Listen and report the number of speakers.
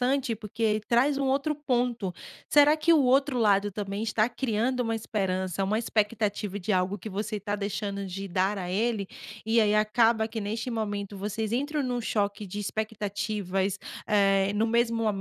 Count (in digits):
1